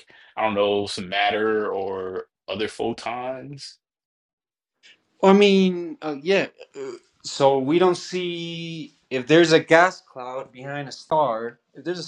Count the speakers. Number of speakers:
two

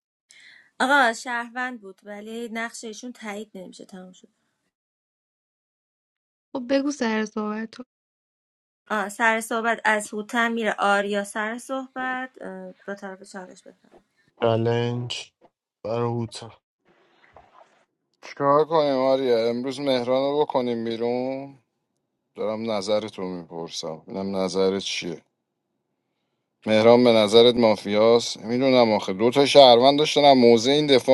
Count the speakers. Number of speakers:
four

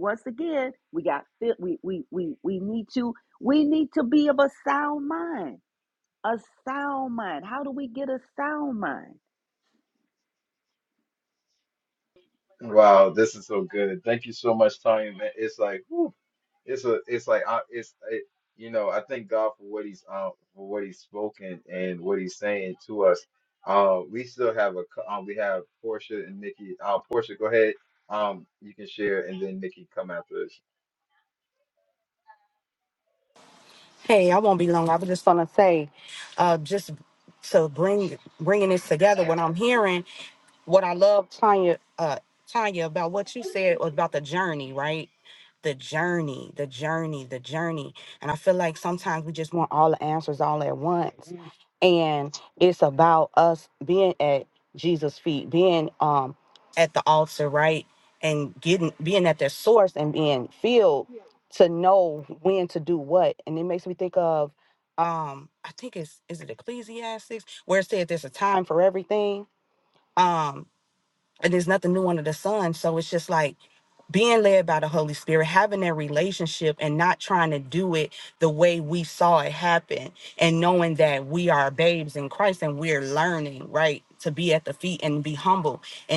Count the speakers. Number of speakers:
three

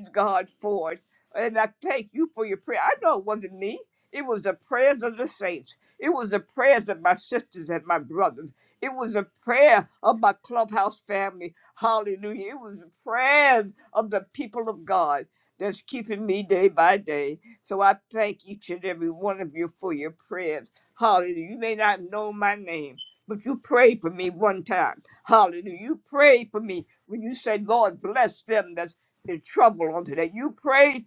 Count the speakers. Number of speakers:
one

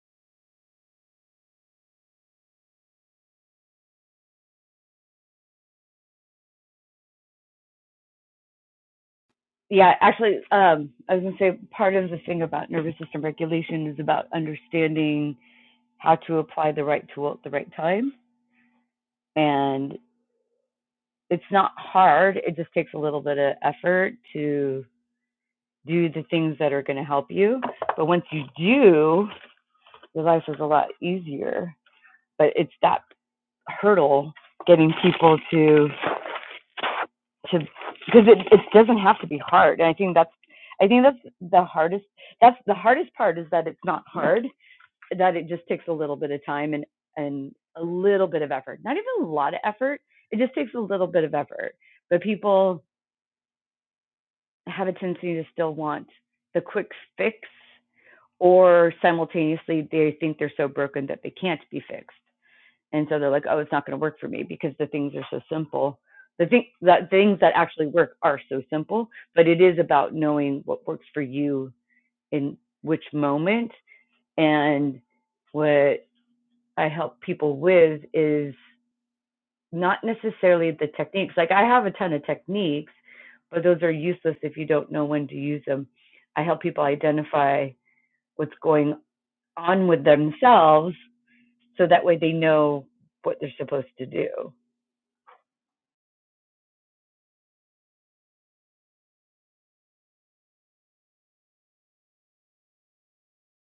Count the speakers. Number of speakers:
one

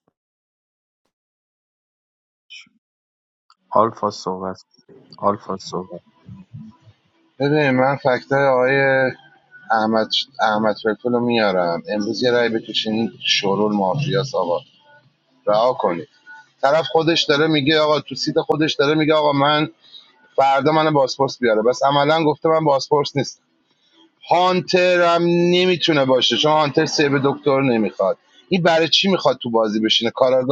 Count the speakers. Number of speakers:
two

